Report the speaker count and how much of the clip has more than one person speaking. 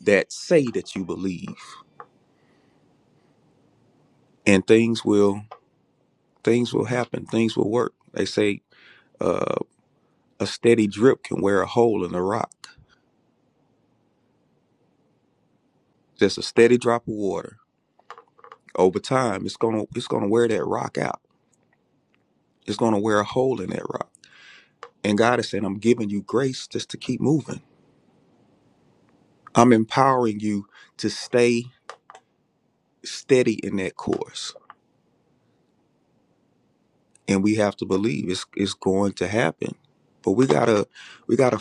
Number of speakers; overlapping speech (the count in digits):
1, no overlap